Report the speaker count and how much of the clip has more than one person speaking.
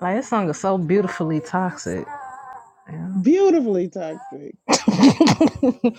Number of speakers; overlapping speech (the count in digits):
2, about 1%